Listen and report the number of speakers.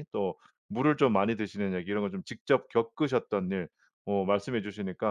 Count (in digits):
1